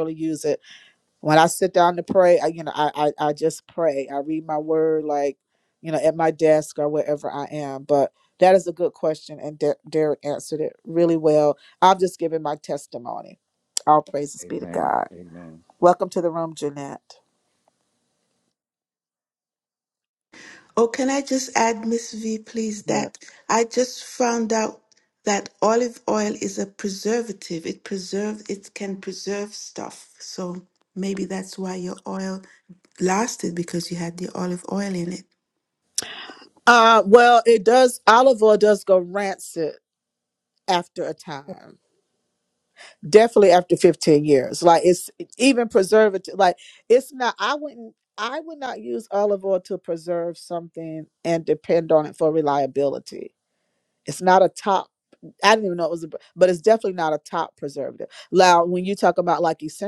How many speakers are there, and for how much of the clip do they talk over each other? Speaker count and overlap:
3, about 2%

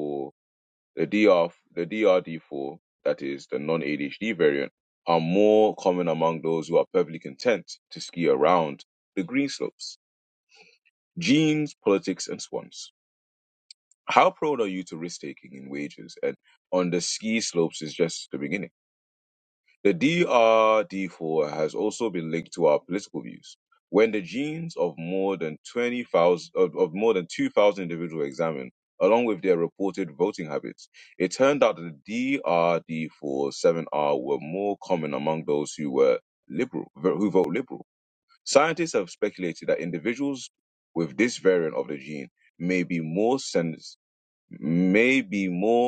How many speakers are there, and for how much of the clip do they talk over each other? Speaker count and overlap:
1, no overlap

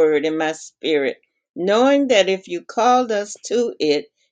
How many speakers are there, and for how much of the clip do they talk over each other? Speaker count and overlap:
1, no overlap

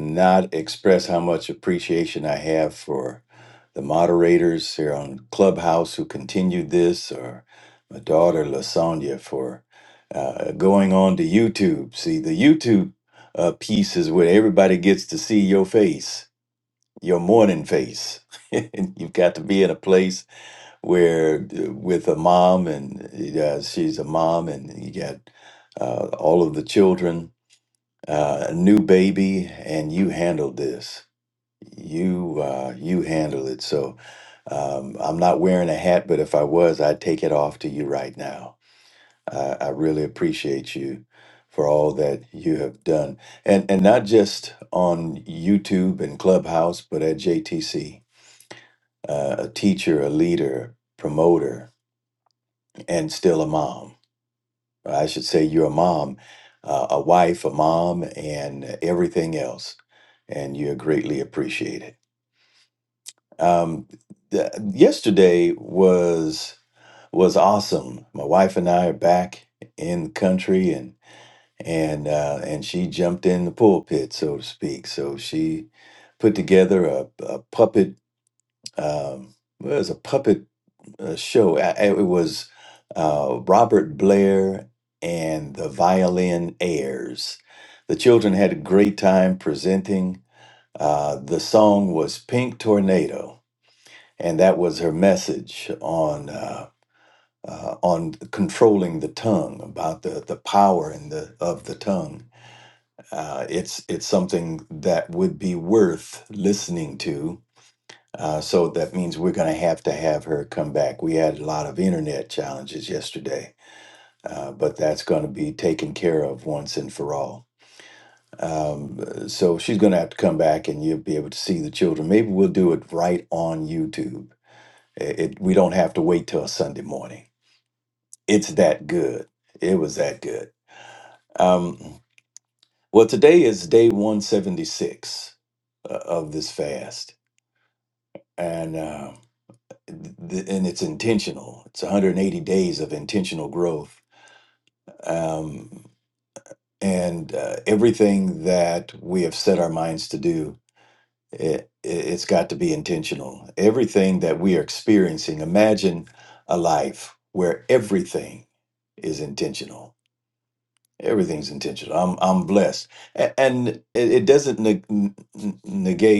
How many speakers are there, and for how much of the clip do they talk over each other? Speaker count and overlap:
1, no overlap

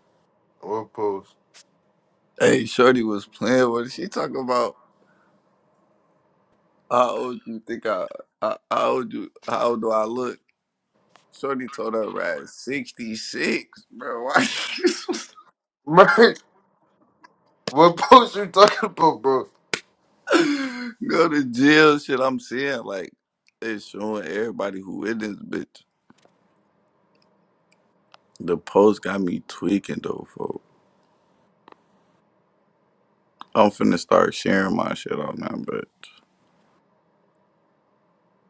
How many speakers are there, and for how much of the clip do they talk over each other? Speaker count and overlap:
2, no overlap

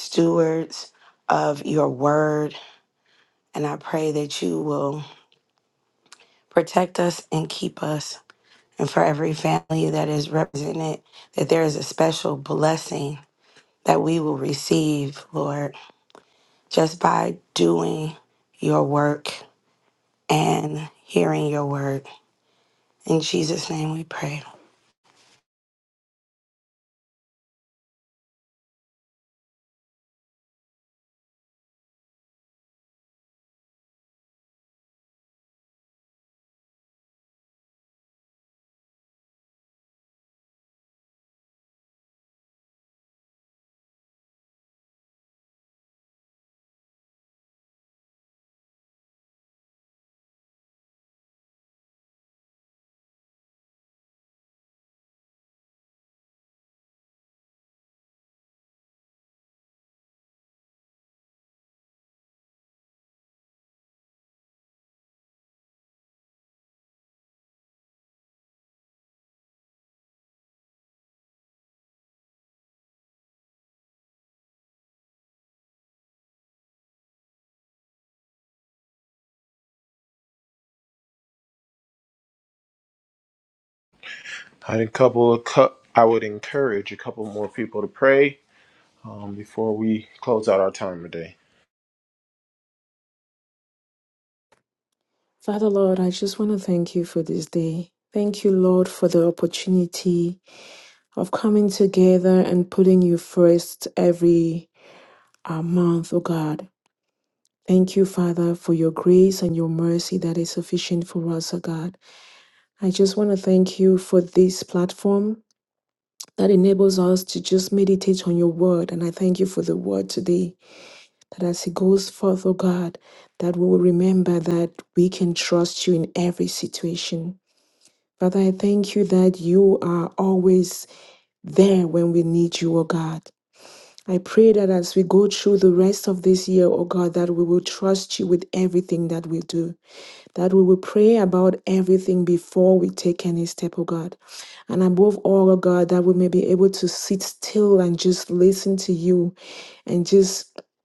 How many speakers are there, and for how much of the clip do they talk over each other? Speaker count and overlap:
3, no overlap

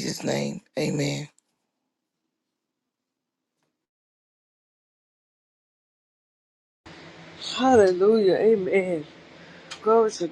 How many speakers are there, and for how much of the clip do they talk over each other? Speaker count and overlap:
2, no overlap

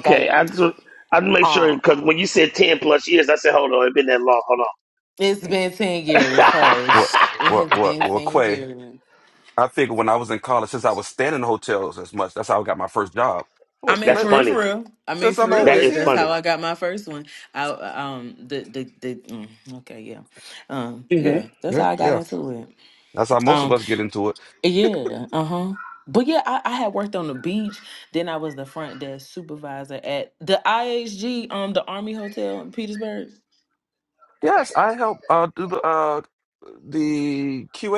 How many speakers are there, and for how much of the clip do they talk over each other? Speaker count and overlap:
3, about 13%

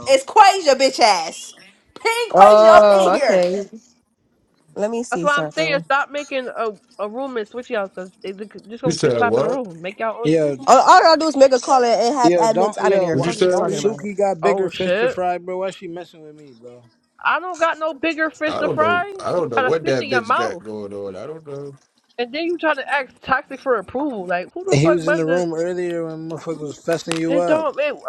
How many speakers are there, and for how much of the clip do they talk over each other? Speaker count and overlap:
5, about 31%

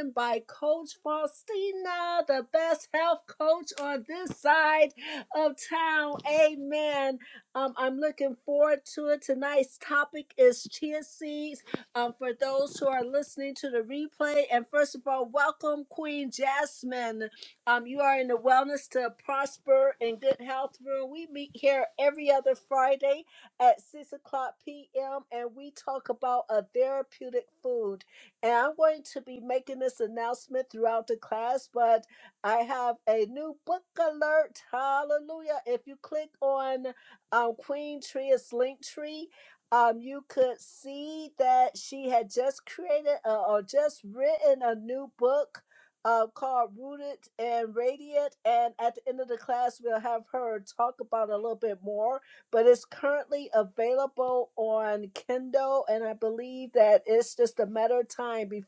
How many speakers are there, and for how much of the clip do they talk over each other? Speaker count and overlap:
1, no overlap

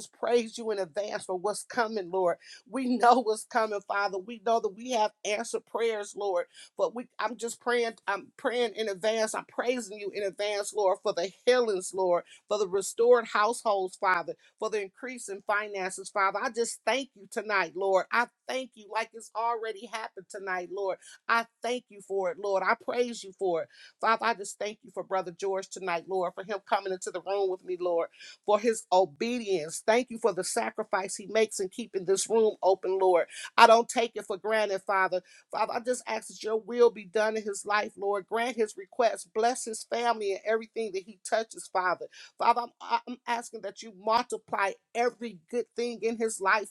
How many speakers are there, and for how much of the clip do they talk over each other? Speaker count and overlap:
1, no overlap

